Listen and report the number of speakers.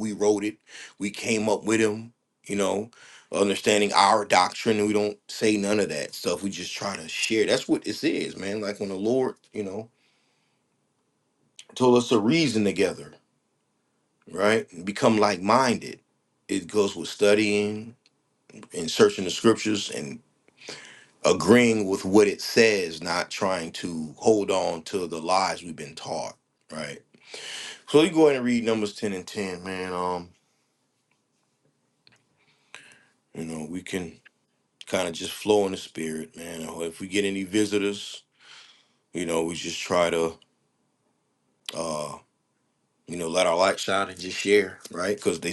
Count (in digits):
1